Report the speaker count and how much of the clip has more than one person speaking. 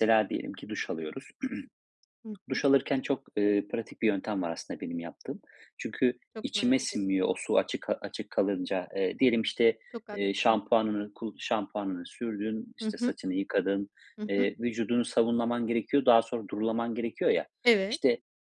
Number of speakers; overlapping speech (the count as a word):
two, about 8%